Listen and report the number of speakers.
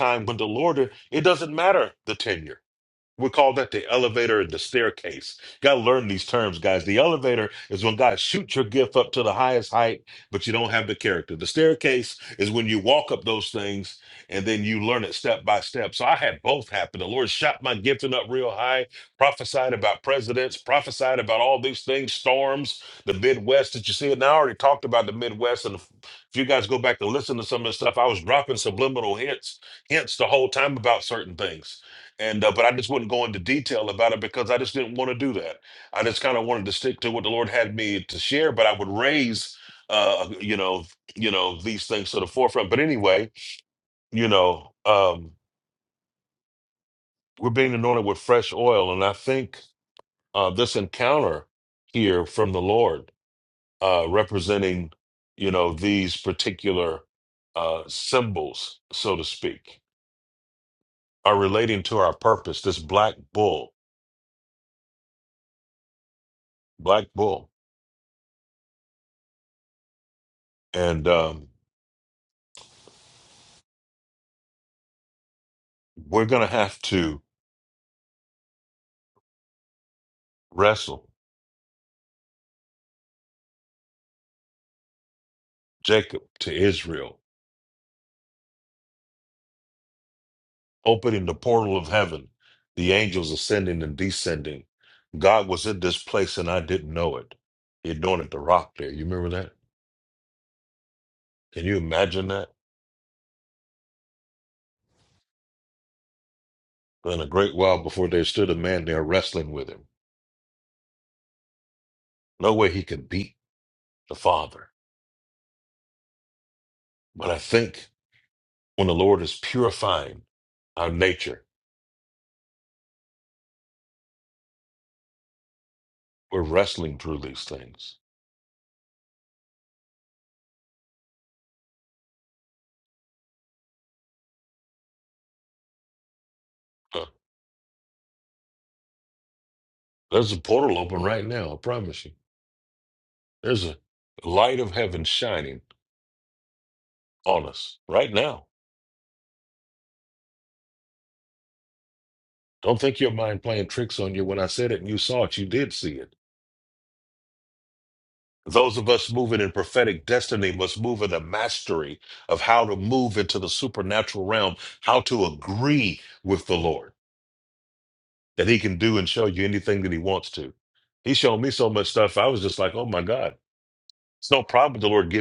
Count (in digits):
1